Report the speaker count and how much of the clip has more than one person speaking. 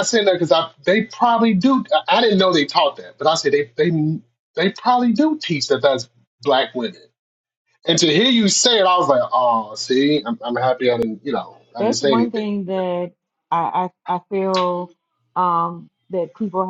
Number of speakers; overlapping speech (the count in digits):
2, about 4%